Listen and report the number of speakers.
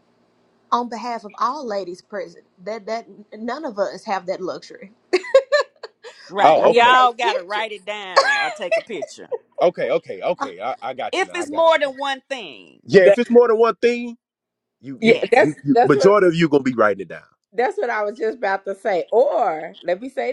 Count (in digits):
4